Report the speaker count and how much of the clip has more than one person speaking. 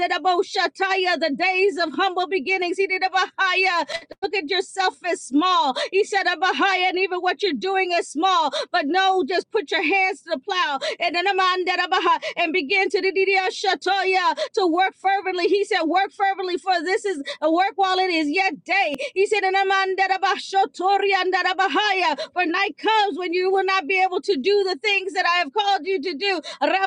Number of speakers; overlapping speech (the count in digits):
1, no overlap